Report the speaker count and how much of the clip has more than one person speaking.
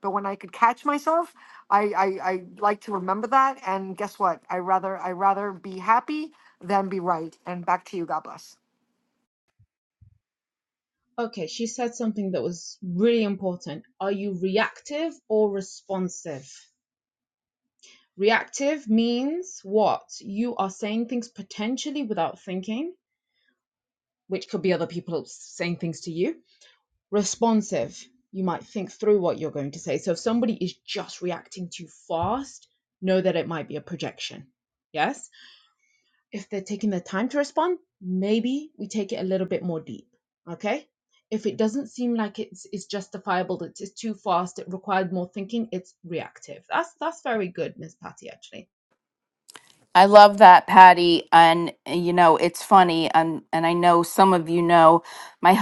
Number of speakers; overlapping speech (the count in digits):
3, no overlap